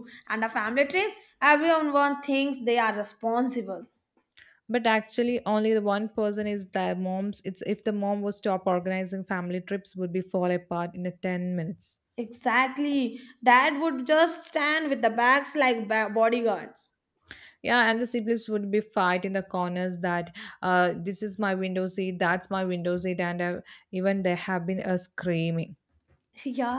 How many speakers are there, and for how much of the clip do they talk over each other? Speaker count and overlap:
two, no overlap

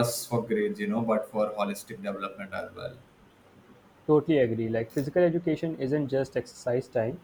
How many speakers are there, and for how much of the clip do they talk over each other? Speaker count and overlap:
two, no overlap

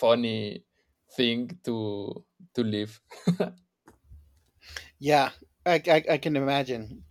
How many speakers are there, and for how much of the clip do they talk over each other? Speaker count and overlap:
two, no overlap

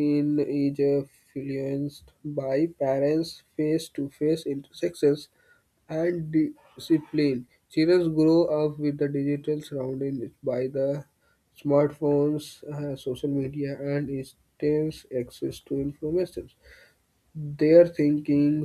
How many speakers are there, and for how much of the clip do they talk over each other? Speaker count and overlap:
one, no overlap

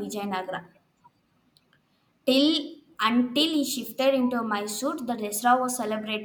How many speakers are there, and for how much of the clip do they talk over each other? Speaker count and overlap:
one, no overlap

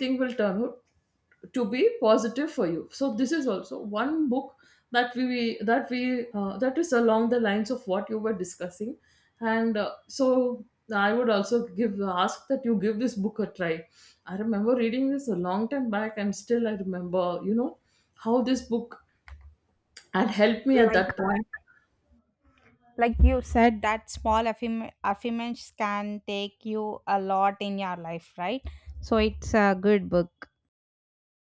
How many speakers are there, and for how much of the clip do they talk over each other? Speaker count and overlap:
two, about 1%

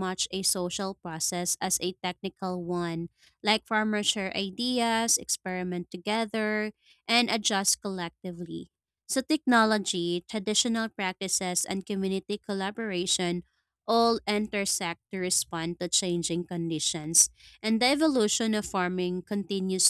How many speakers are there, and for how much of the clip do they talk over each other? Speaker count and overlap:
one, no overlap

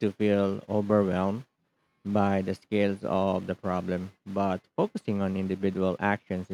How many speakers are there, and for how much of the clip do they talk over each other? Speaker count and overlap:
one, no overlap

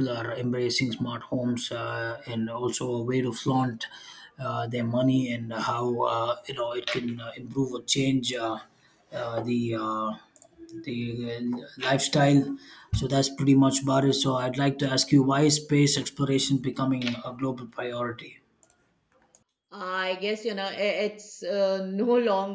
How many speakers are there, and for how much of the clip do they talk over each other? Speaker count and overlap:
two, no overlap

